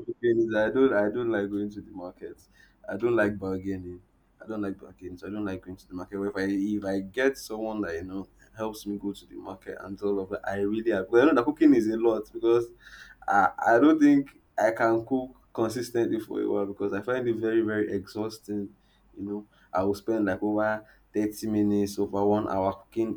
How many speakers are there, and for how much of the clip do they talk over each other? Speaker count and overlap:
one, no overlap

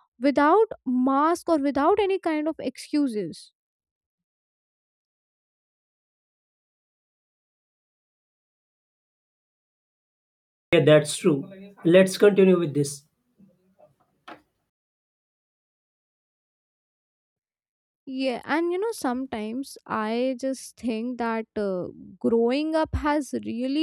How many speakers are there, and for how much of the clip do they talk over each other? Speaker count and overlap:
two, no overlap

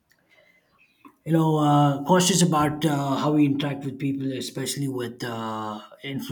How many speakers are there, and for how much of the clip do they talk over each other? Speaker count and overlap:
one, no overlap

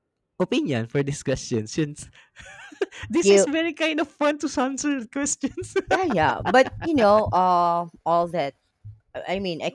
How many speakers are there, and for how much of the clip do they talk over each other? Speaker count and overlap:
two, about 3%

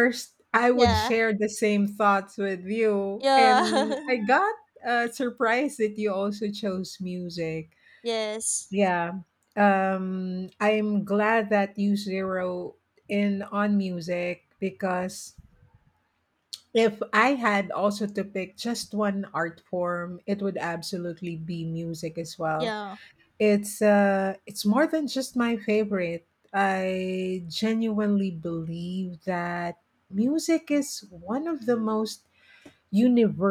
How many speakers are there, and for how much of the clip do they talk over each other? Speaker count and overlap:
two, about 3%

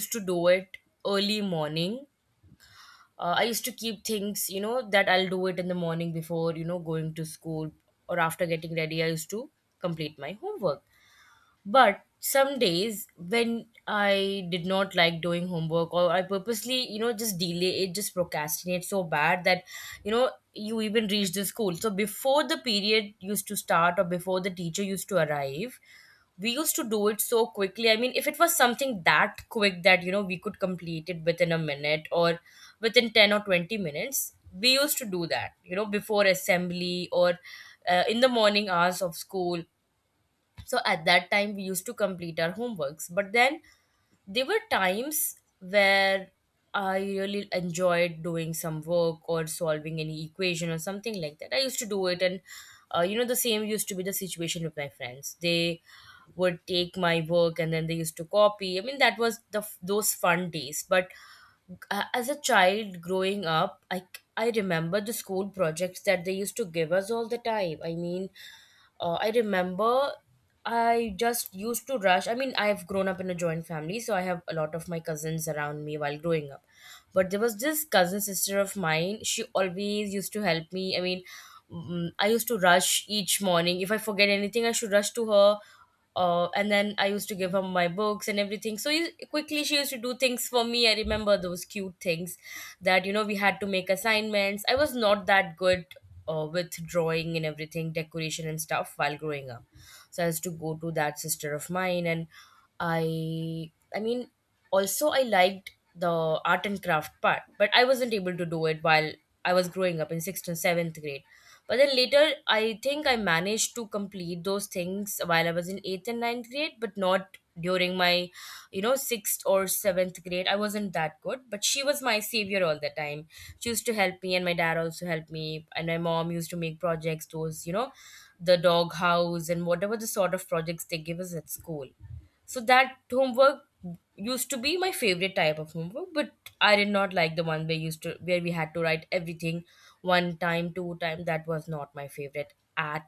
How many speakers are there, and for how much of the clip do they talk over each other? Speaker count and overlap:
one, no overlap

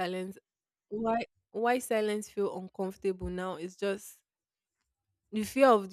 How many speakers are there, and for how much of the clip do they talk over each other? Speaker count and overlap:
one, no overlap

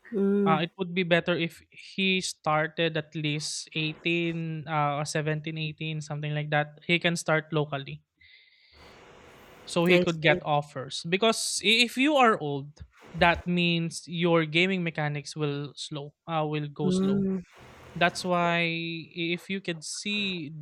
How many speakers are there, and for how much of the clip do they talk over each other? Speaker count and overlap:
two, about 5%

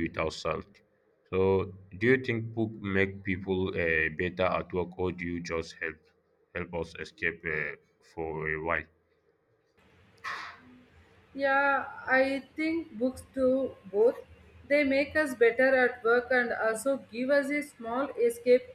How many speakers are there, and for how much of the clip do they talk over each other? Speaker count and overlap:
two, no overlap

